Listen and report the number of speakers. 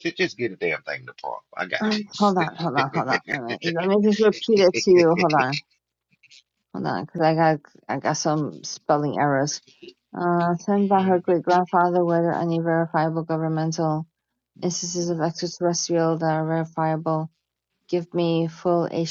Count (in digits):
2